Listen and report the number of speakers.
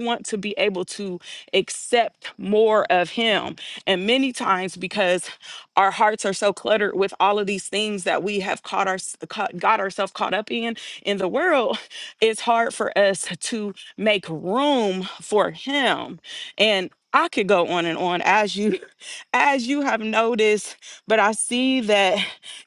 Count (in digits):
1